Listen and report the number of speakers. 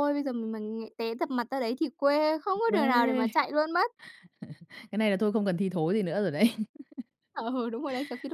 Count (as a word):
two